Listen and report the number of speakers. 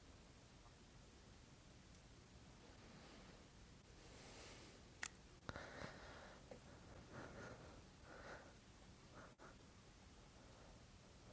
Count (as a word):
zero